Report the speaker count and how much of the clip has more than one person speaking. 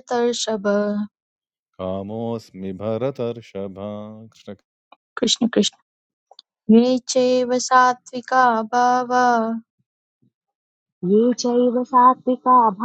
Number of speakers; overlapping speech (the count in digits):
3, no overlap